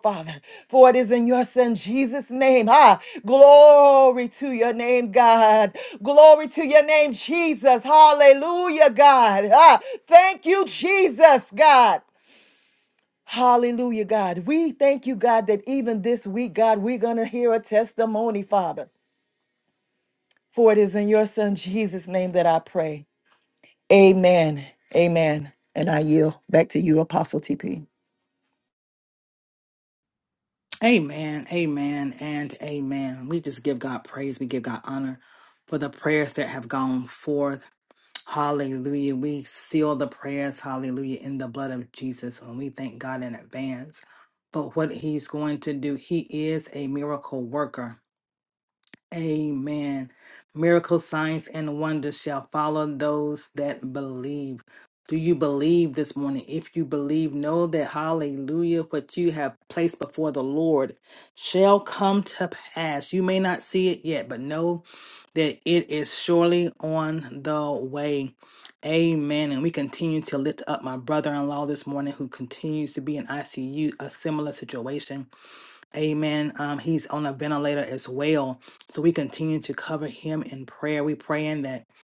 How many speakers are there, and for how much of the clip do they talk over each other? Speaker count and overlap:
2, no overlap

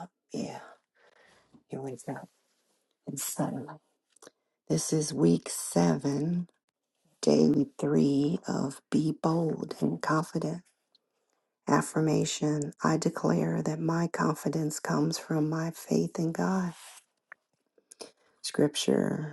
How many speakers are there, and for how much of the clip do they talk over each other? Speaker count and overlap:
1, no overlap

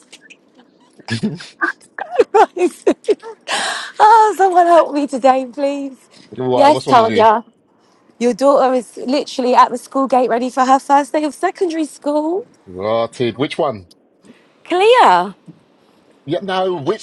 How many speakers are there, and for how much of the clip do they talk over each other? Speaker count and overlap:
2, about 4%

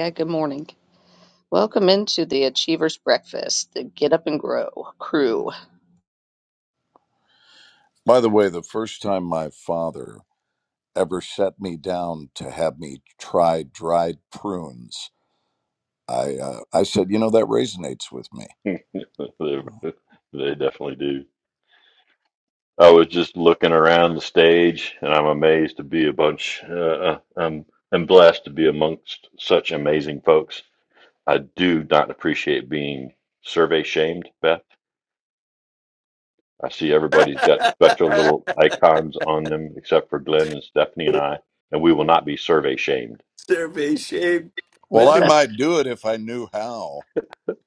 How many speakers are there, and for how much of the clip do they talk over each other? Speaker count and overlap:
4, about 1%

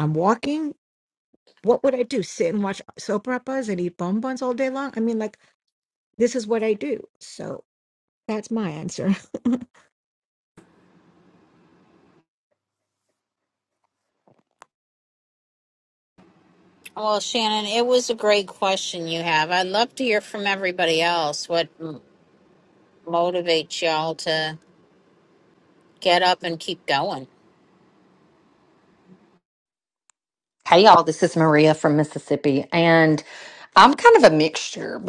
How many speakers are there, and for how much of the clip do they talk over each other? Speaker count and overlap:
3, no overlap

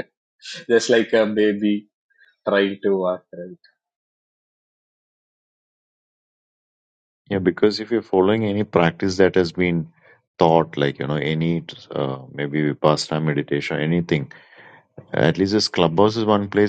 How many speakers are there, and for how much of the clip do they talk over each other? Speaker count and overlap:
2, no overlap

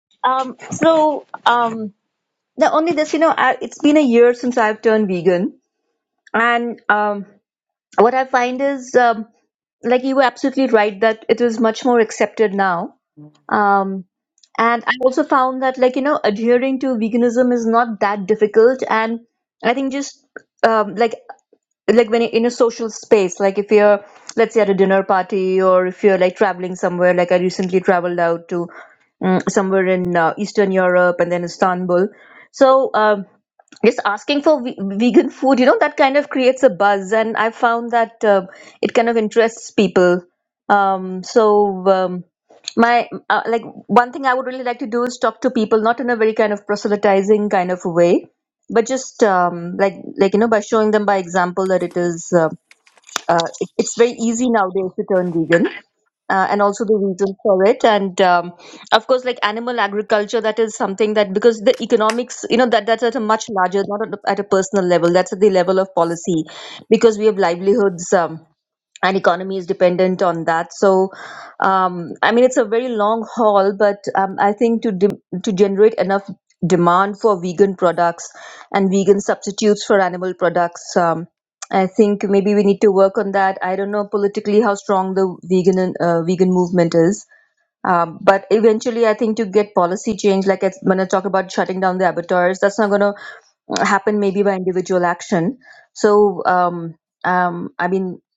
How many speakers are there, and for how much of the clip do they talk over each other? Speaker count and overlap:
1, no overlap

